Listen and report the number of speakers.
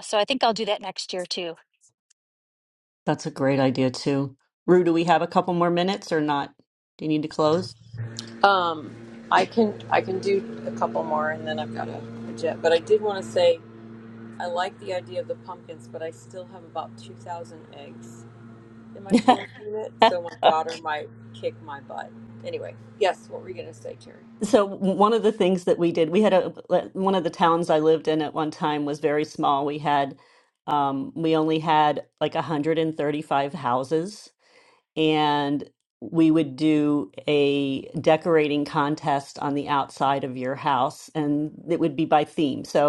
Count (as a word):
three